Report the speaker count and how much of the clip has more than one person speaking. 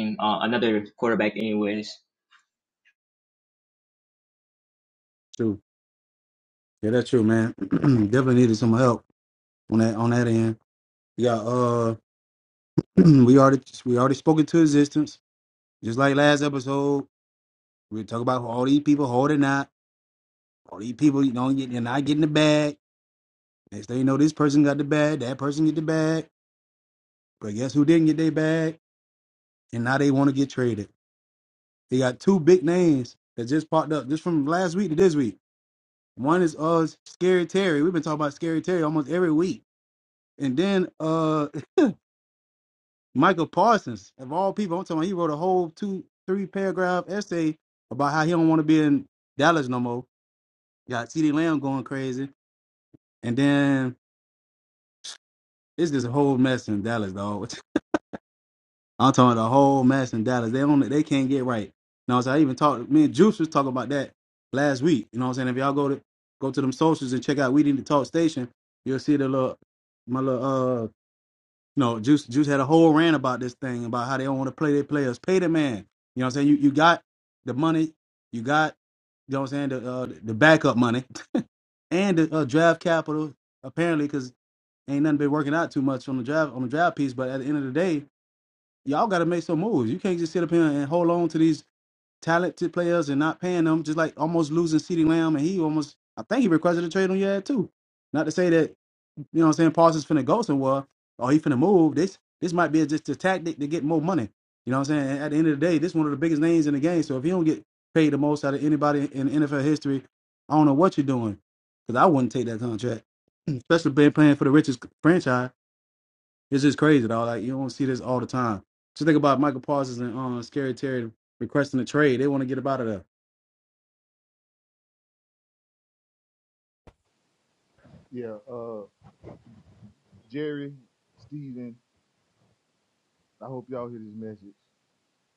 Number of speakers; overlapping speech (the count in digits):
3, no overlap